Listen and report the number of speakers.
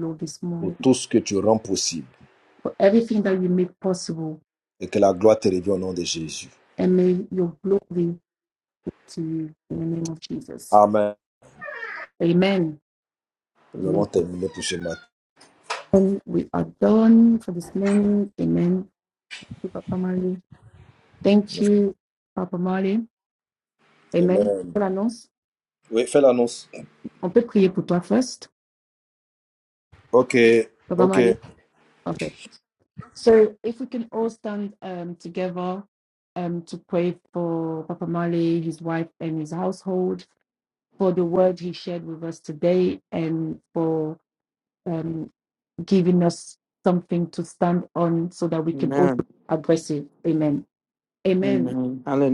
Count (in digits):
3